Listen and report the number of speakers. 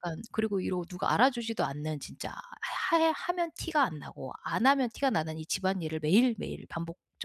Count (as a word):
one